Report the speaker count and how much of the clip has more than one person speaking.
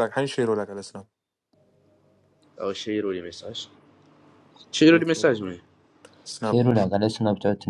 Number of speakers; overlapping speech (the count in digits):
3, about 6%